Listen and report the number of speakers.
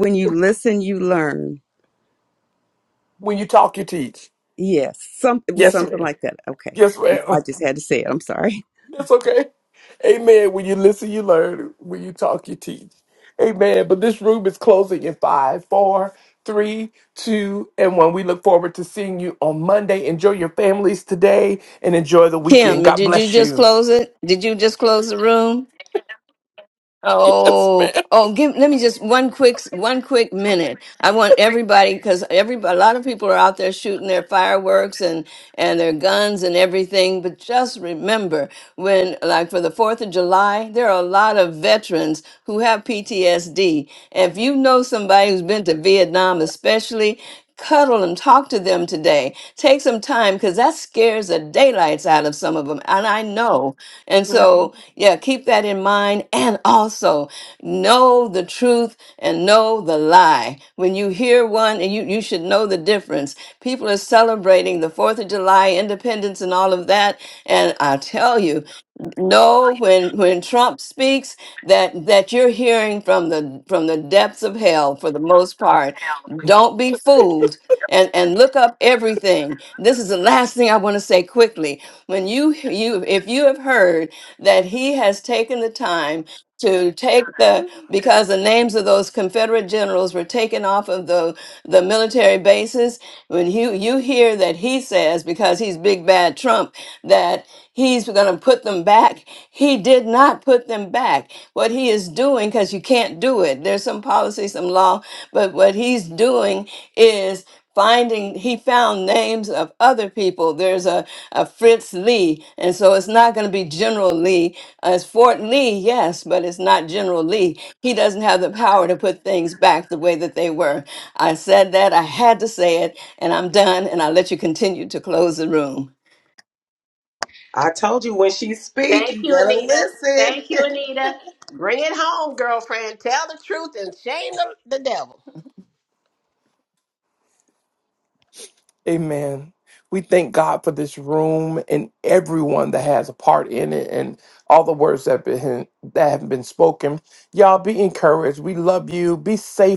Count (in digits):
5